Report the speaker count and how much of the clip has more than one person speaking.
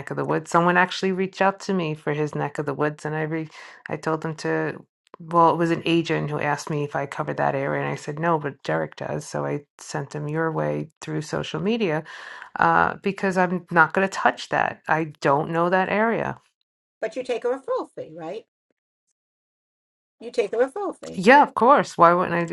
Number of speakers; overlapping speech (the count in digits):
2, no overlap